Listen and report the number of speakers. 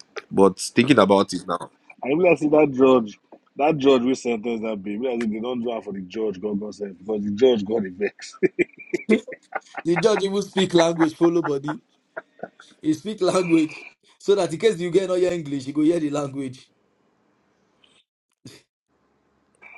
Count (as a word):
three